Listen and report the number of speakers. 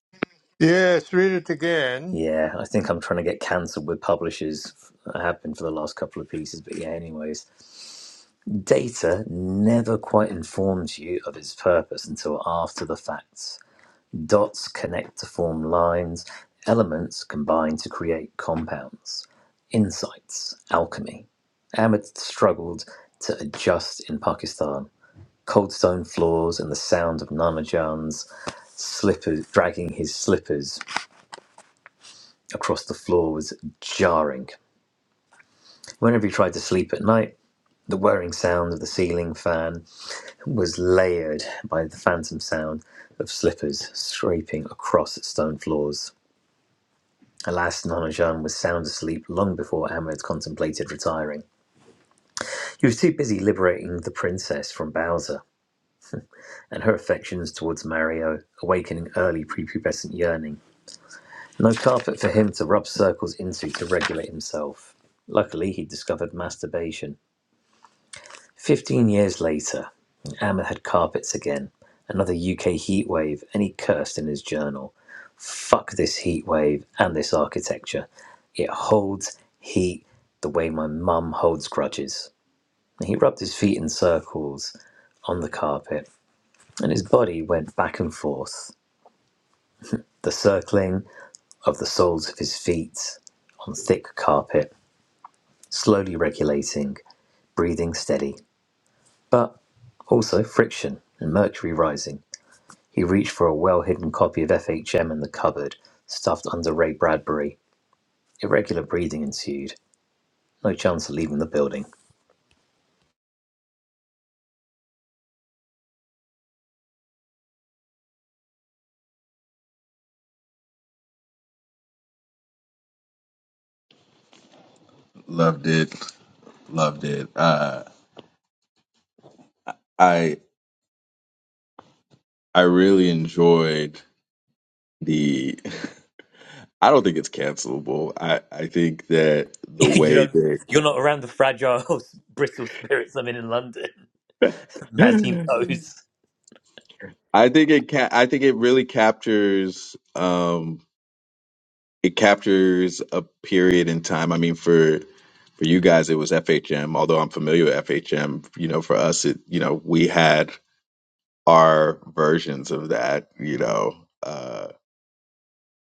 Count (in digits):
3